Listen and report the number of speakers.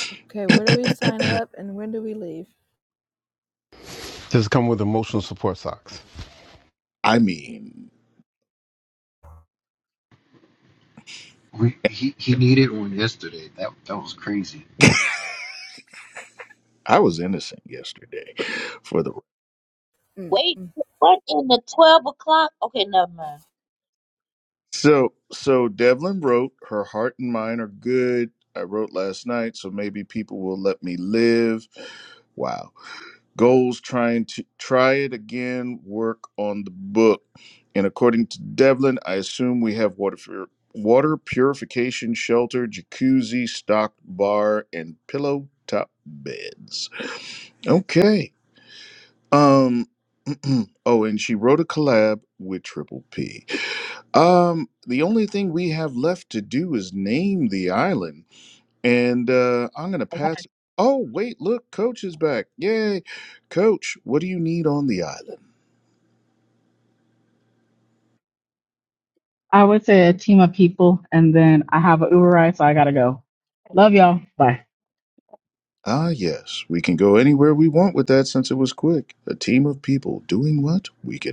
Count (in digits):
6